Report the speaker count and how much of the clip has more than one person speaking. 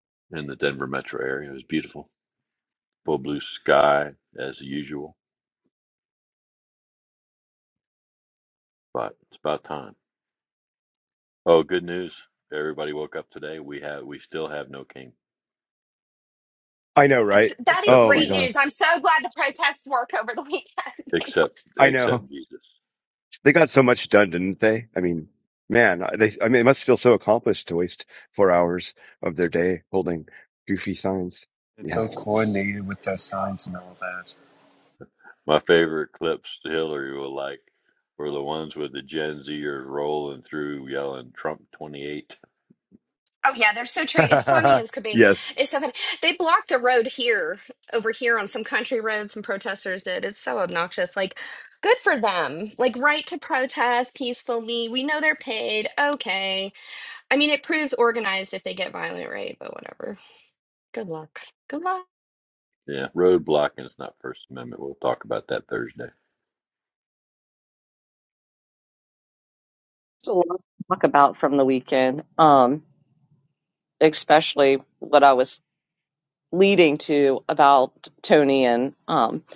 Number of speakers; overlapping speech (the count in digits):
5, about 2%